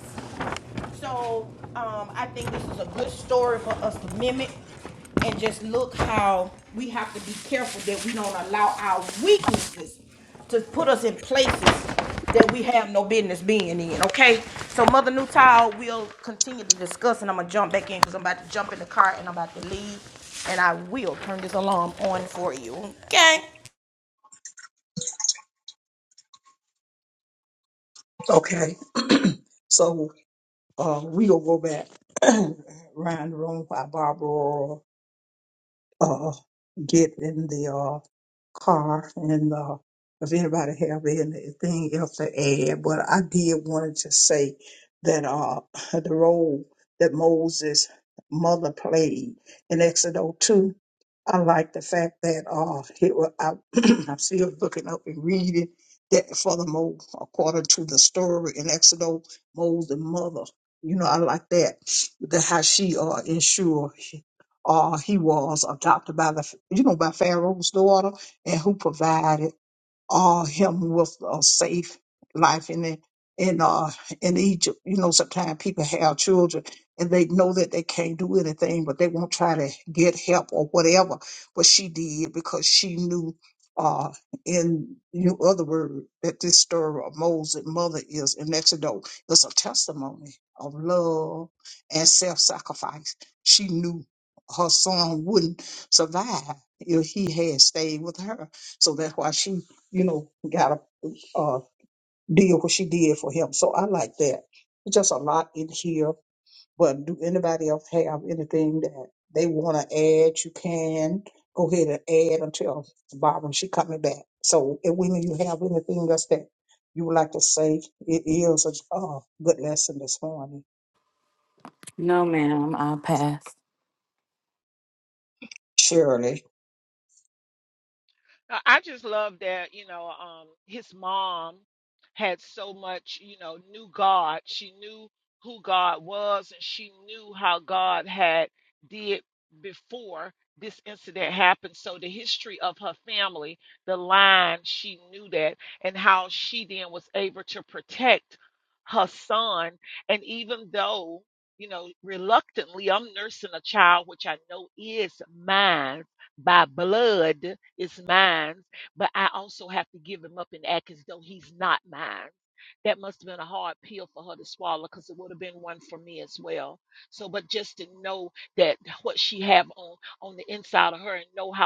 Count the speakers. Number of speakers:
4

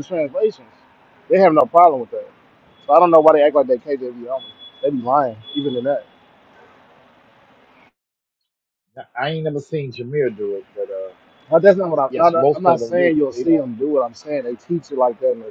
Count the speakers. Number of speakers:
2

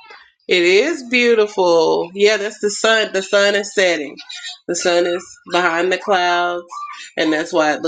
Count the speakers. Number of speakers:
1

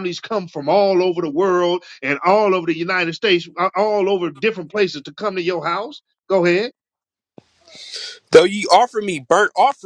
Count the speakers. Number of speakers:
2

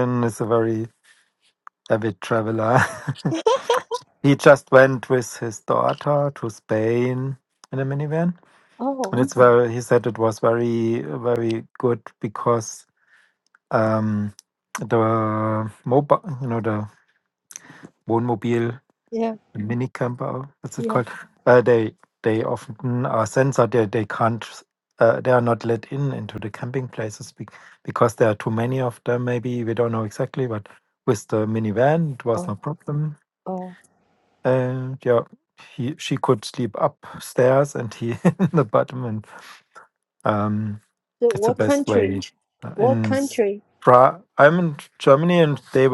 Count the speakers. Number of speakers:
2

